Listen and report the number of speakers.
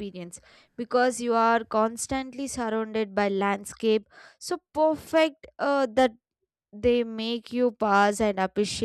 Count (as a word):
one